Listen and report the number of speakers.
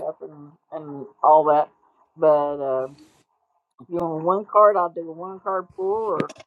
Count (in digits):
1